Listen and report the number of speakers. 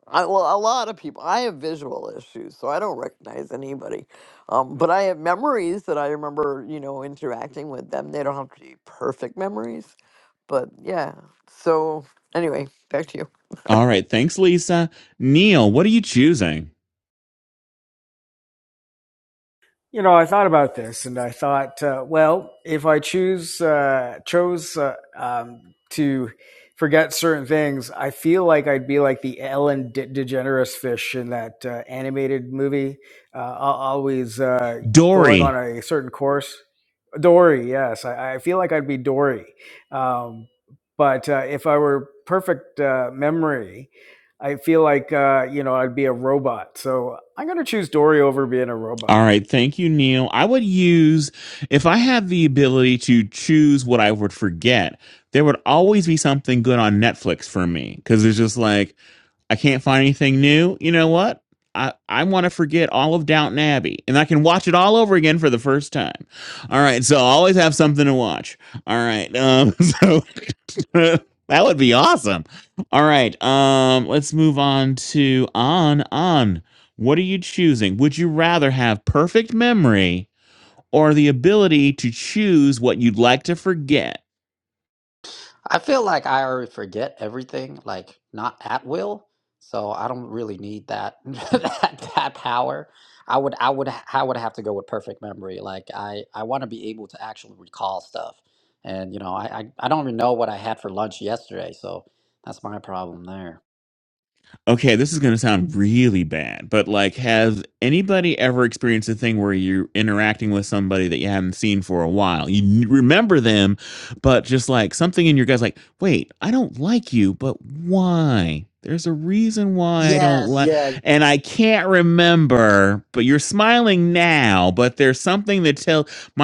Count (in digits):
4